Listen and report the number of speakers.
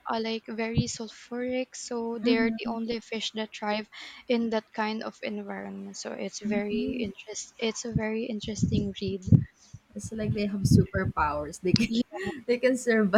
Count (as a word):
two